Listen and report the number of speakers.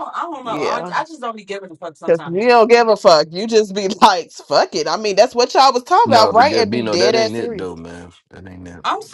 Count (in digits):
3